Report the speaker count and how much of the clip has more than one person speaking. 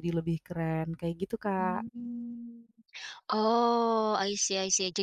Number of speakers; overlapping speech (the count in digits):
2, about 5%